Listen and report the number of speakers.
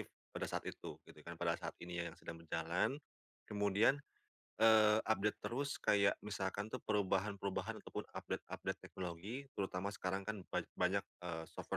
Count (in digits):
1